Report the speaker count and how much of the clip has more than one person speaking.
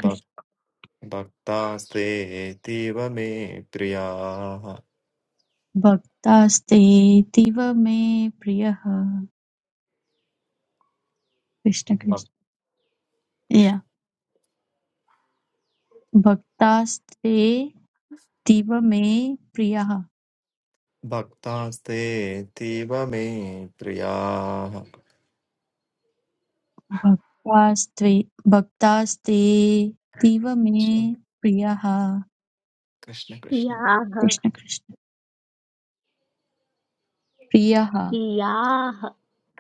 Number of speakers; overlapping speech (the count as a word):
three, about 1%